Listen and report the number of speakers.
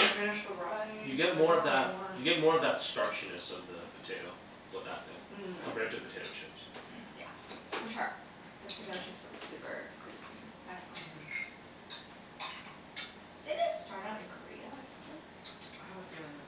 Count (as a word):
three